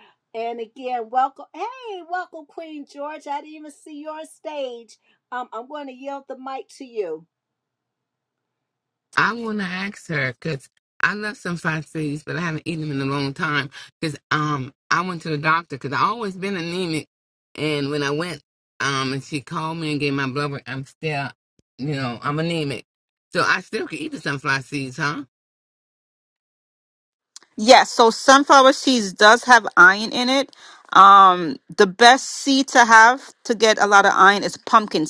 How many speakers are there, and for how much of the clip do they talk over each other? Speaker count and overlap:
3, no overlap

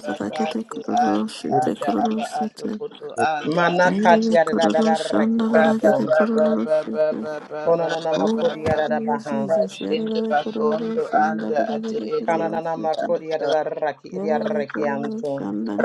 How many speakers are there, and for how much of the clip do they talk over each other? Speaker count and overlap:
3, about 79%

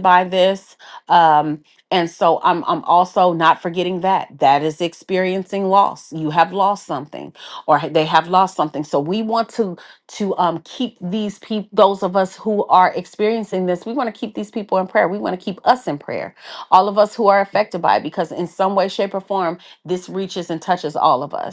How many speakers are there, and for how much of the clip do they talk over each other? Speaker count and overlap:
1, no overlap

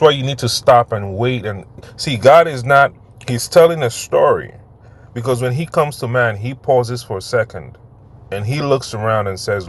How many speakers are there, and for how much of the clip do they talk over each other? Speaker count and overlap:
1, no overlap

